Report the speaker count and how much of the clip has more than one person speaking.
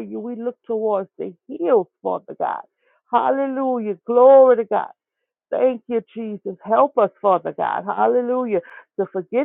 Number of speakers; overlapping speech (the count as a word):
one, no overlap